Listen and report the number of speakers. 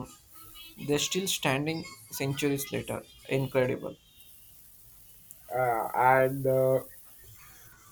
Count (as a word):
two